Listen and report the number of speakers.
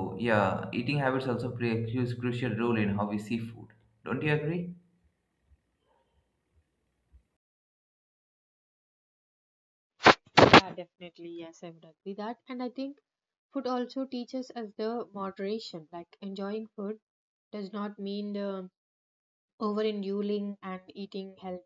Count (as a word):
two